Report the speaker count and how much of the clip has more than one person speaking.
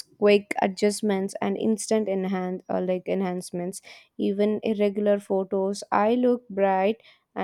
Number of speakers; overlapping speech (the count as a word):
one, no overlap